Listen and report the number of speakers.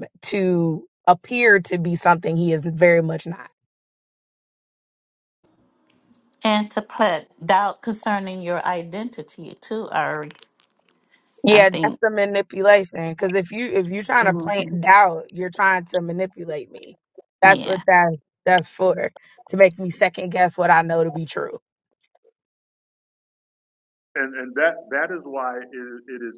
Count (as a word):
three